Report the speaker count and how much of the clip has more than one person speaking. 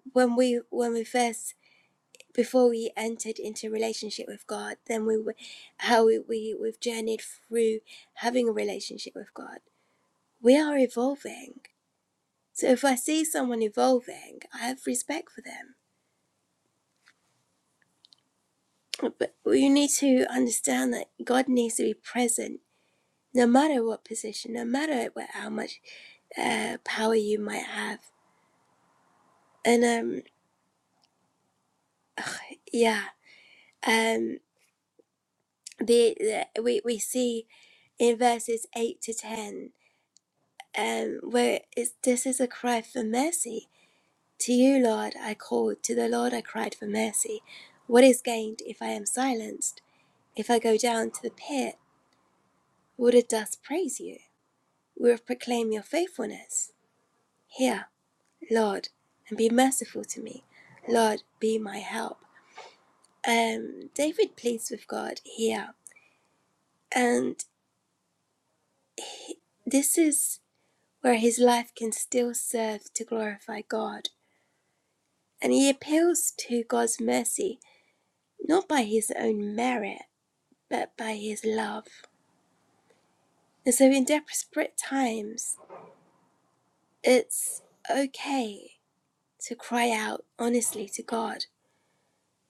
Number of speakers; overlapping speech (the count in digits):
1, no overlap